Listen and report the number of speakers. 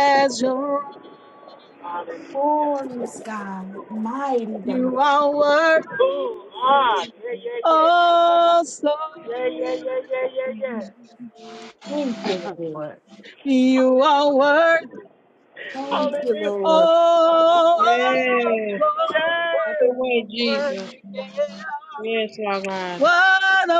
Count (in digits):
4